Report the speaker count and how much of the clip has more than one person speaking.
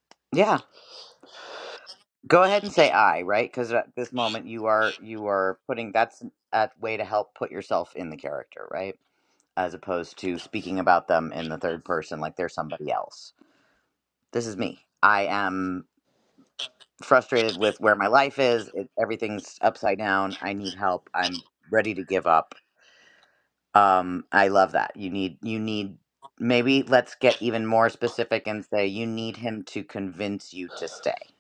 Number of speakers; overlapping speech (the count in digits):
1, no overlap